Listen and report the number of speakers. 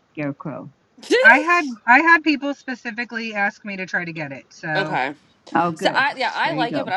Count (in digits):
3